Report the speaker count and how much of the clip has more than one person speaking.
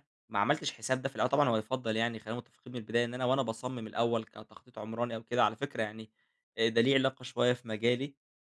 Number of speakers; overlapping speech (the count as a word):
one, no overlap